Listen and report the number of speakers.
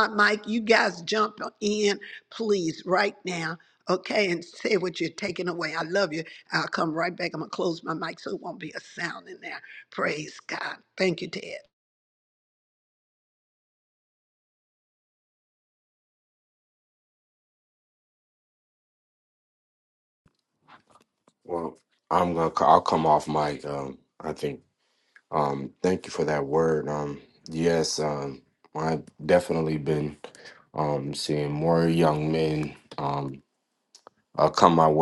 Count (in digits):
2